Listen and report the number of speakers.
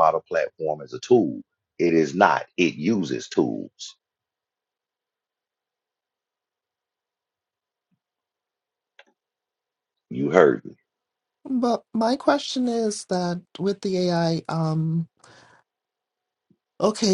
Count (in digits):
2